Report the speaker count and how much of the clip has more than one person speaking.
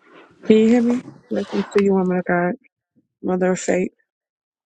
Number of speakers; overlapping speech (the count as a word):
one, no overlap